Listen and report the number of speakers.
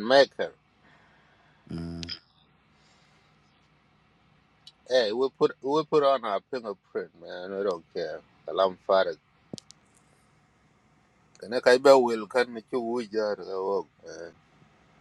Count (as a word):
one